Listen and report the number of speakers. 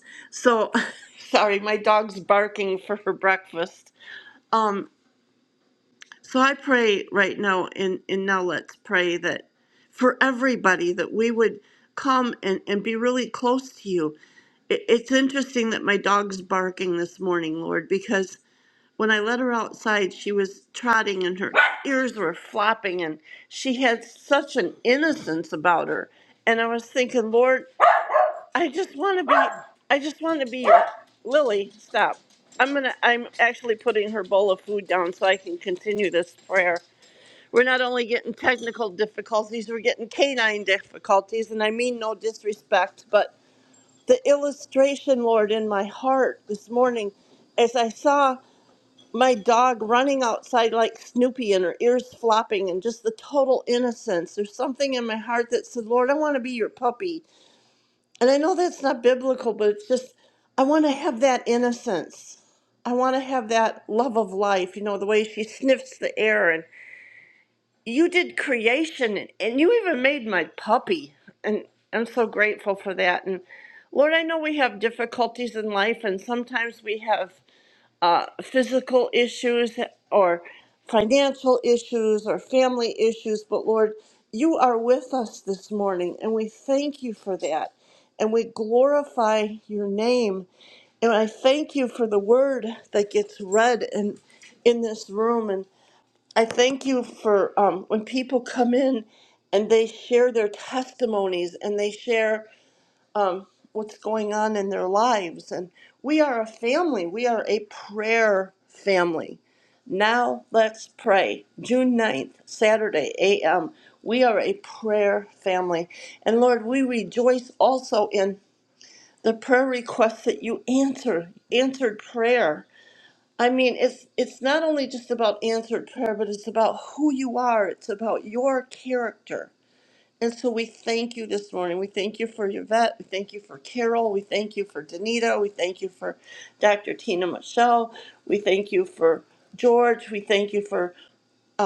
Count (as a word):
one